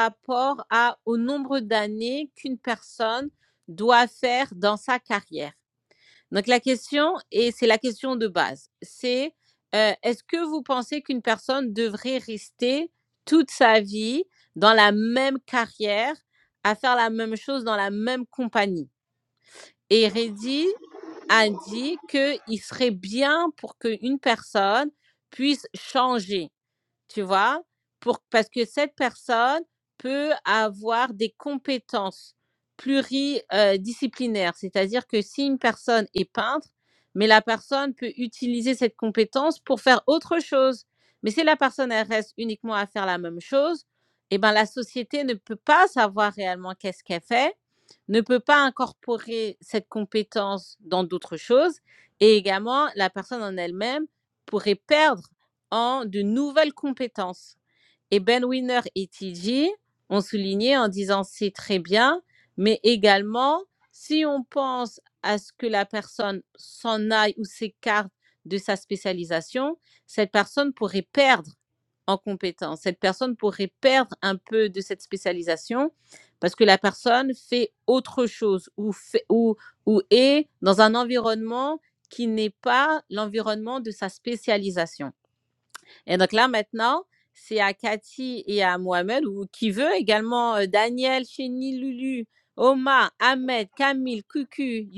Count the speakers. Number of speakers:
1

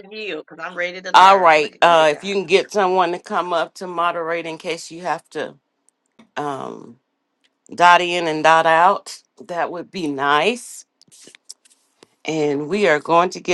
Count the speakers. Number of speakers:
2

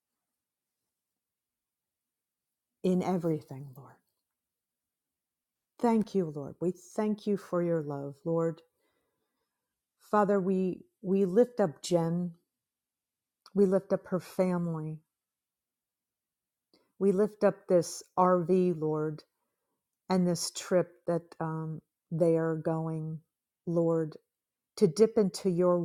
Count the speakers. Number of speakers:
1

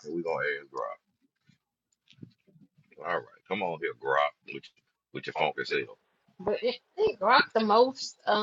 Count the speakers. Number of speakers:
2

